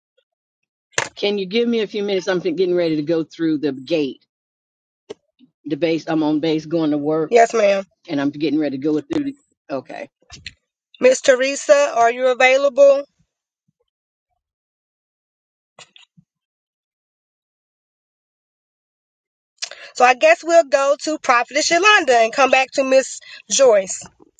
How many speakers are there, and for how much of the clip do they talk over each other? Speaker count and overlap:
2, no overlap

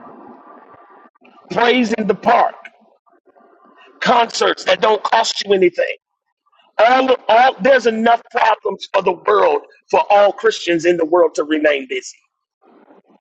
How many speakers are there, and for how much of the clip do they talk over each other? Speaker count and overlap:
1, no overlap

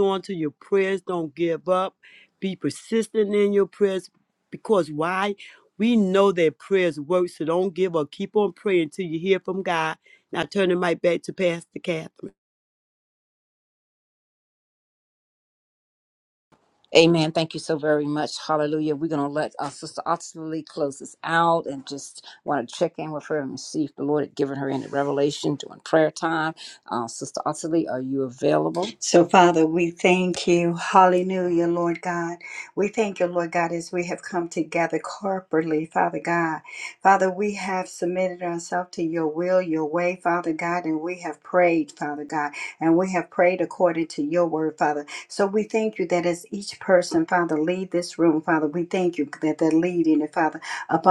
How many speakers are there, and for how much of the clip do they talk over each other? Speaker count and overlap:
3, no overlap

